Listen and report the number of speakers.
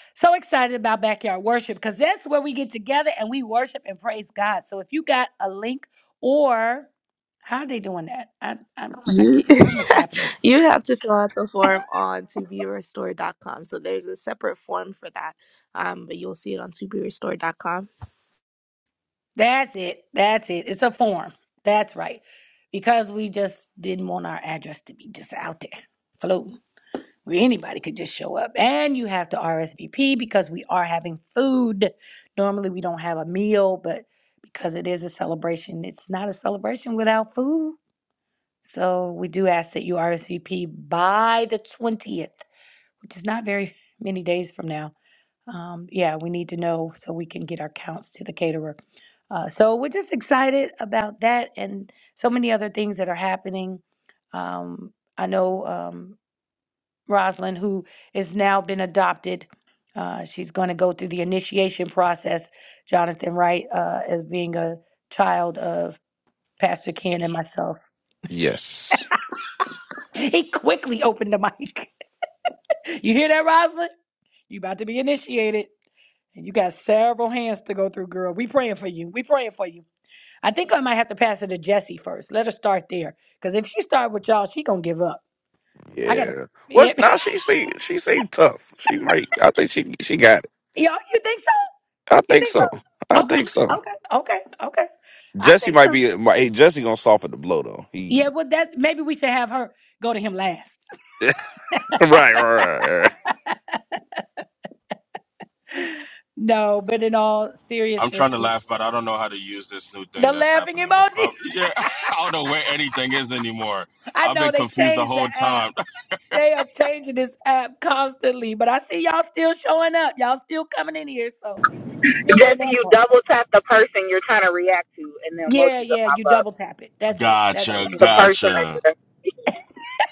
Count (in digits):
5